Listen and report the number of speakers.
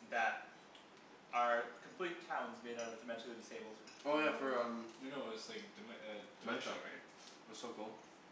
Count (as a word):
three